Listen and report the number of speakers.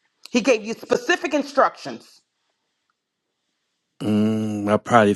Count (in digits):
2